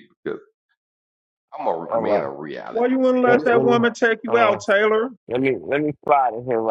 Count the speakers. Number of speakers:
3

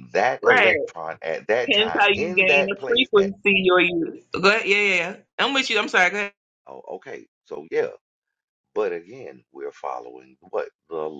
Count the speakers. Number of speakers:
2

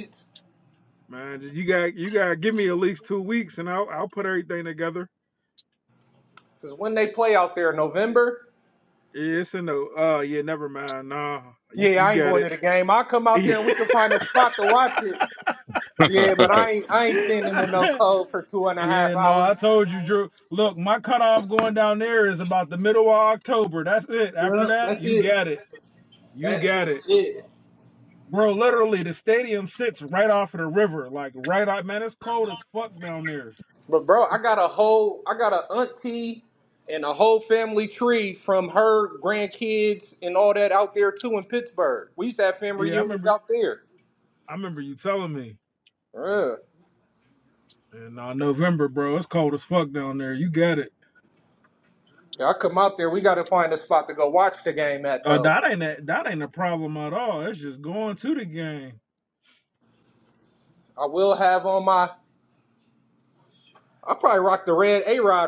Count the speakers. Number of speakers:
2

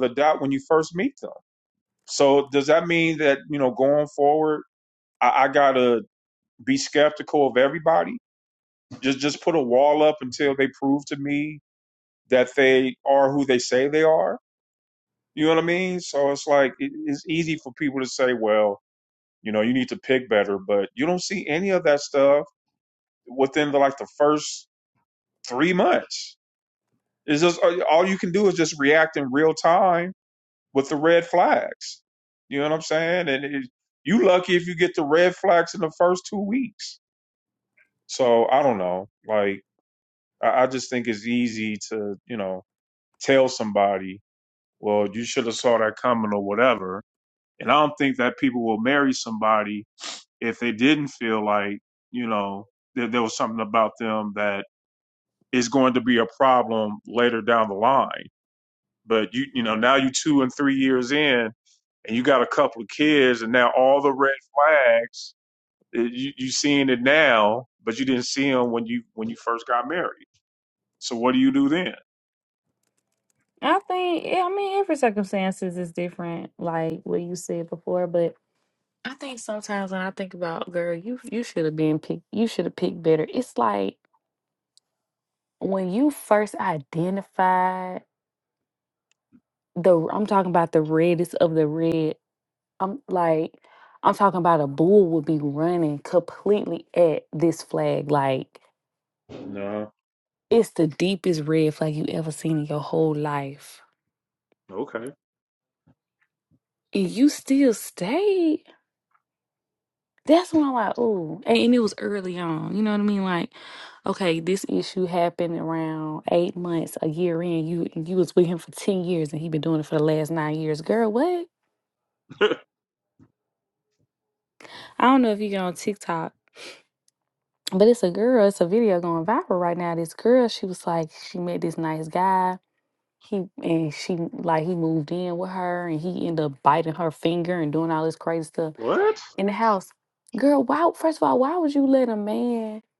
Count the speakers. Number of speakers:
2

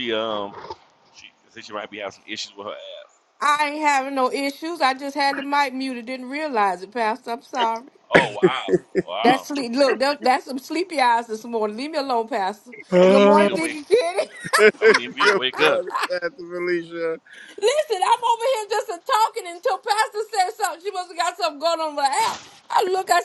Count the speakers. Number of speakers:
3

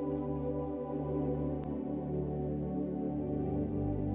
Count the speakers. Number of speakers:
0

